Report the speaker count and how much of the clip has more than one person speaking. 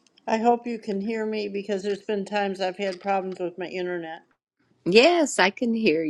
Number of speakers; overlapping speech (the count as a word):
two, no overlap